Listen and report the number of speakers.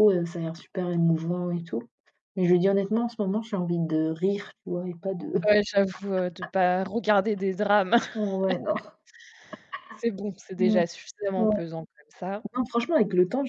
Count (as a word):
two